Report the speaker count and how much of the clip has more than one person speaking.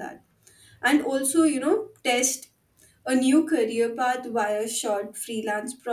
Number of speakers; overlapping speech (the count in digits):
1, no overlap